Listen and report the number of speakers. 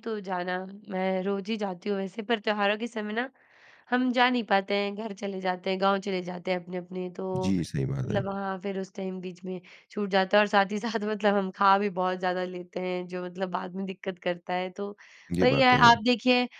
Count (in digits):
2